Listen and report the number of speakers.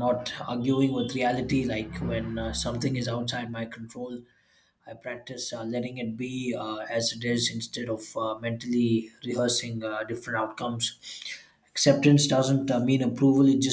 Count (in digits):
1